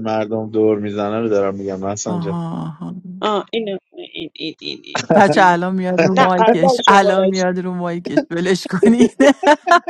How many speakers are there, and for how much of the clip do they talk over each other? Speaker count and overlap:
three, about 18%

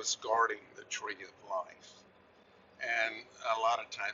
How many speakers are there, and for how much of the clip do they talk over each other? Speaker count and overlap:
one, no overlap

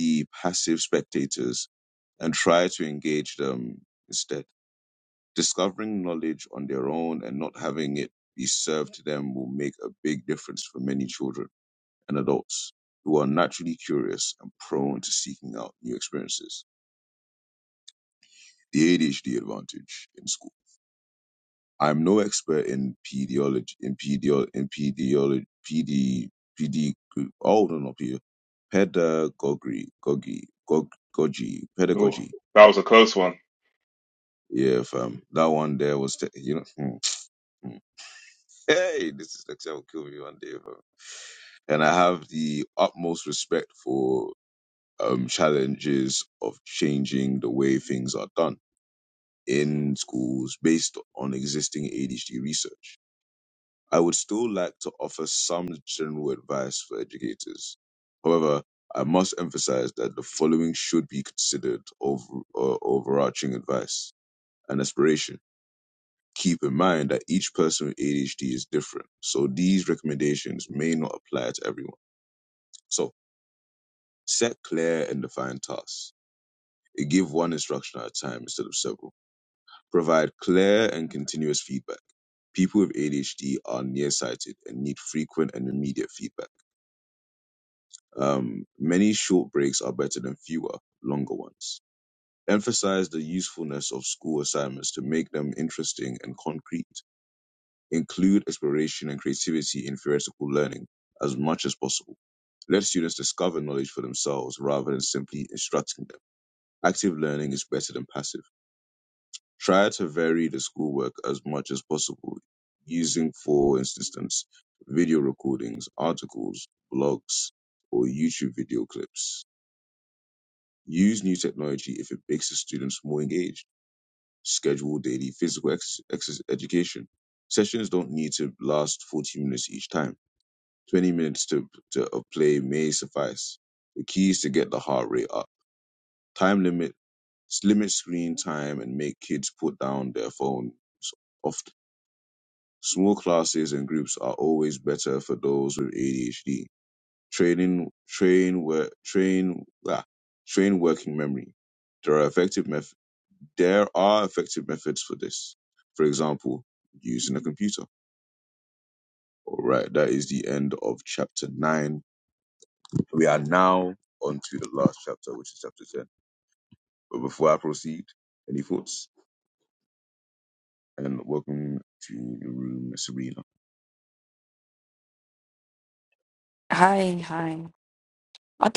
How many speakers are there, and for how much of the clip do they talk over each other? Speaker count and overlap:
three, under 1%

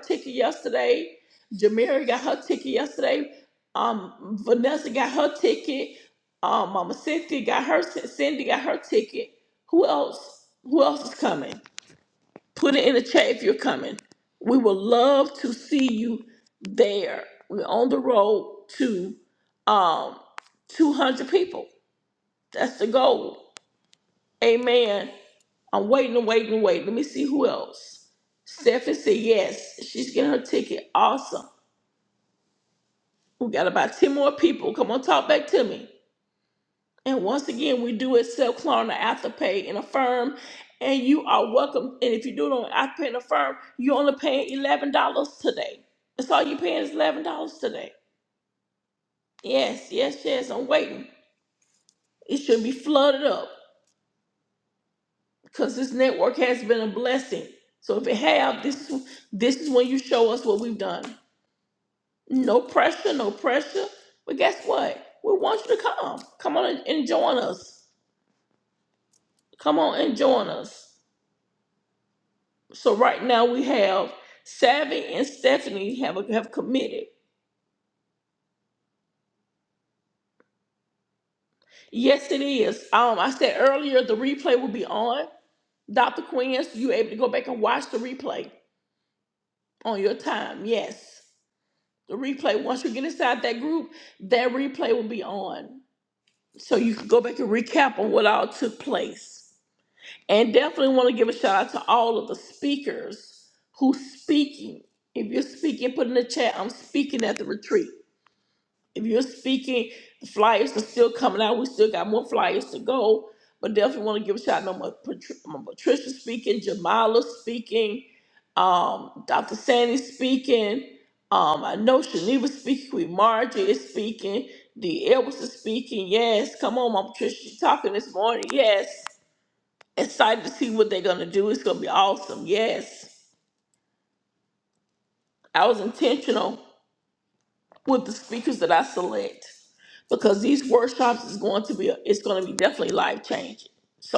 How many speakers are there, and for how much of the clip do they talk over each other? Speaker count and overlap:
one, no overlap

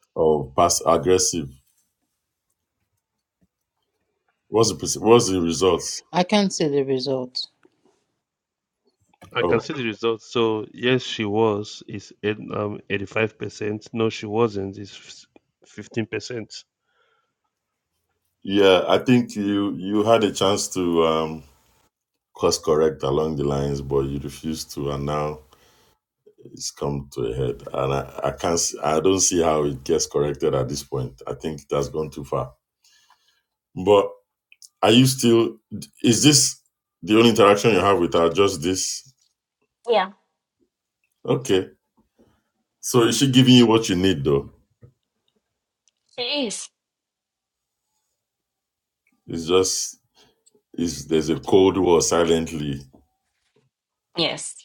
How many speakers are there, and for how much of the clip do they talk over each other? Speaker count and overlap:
four, under 1%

